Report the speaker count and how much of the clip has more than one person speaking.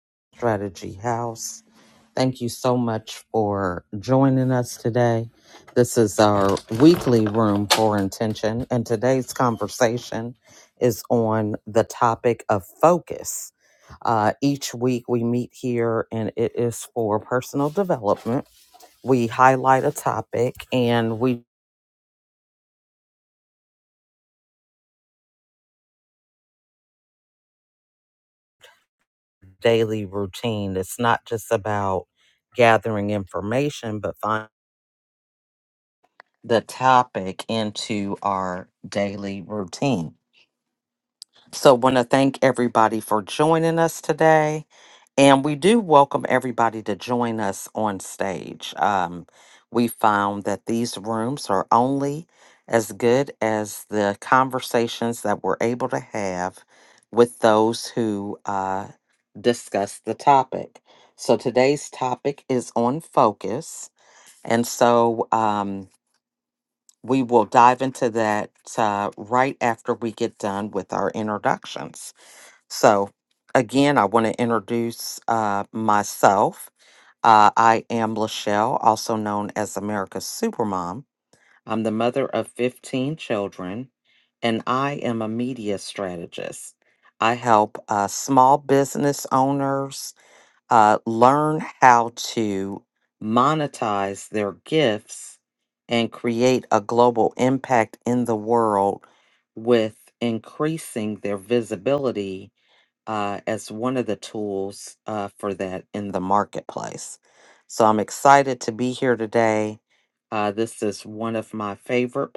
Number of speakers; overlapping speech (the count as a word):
one, no overlap